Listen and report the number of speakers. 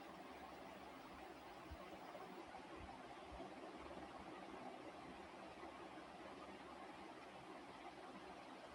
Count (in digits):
0